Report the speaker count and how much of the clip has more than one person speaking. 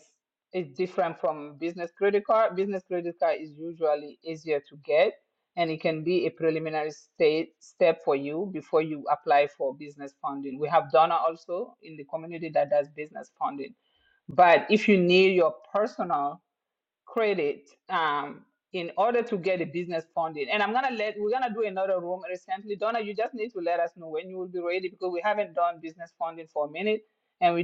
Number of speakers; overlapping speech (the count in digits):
1, no overlap